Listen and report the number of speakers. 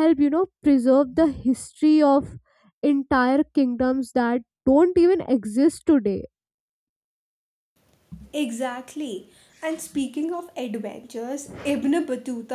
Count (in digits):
2